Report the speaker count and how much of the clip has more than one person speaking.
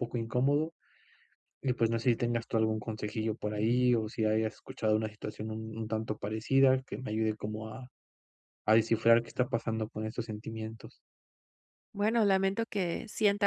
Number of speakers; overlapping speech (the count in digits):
2, no overlap